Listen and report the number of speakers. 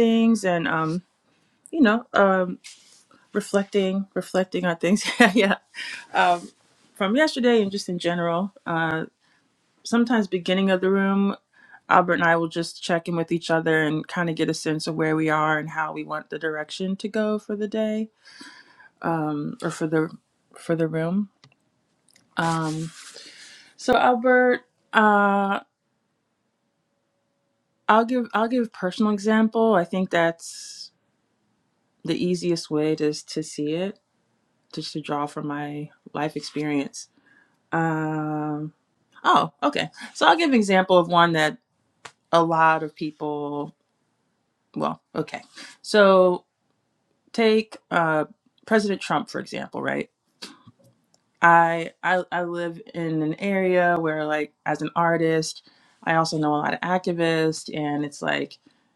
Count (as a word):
one